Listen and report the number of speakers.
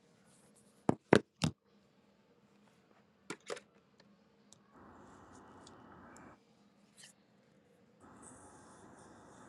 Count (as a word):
zero